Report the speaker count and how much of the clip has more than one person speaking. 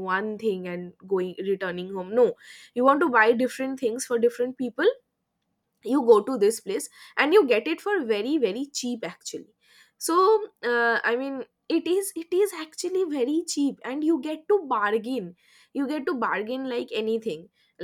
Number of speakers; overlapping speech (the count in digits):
1, no overlap